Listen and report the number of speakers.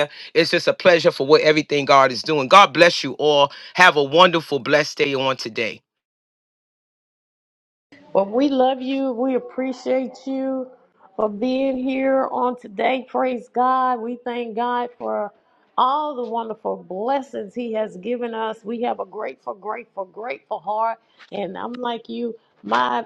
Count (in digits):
2